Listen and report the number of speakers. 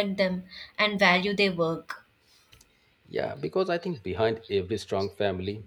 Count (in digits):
2